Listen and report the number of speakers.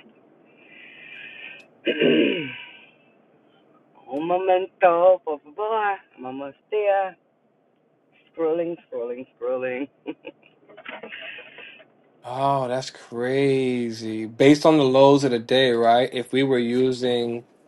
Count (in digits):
2